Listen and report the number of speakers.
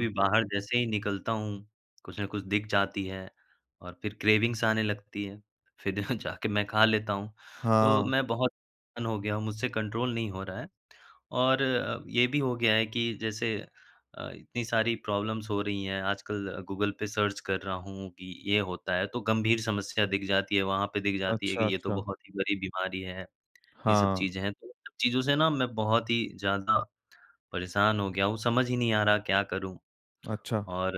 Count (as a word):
two